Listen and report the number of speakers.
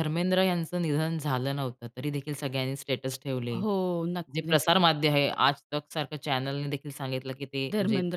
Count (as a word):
two